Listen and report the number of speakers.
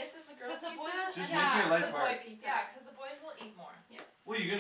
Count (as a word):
three